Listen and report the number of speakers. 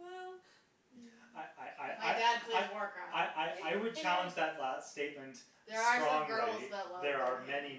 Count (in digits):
3